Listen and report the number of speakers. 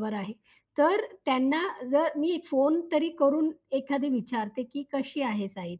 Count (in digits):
1